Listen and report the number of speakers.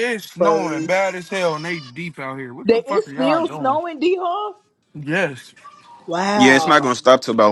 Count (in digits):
3